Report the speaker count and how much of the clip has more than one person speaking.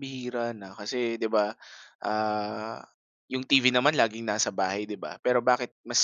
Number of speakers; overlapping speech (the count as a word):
one, no overlap